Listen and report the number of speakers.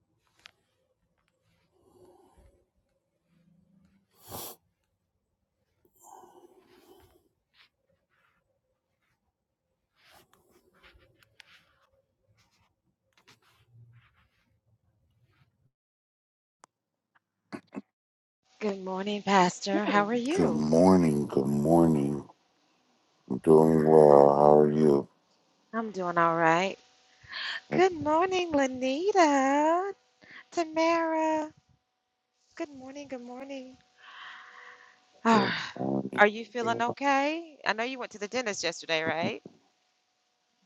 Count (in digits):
2